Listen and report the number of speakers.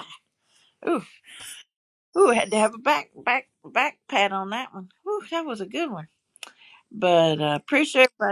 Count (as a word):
one